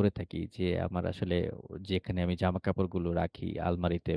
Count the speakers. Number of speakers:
one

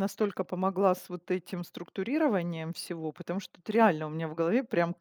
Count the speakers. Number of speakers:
one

